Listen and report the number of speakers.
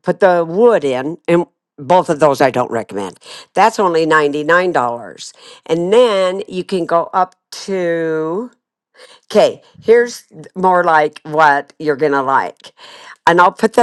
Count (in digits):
1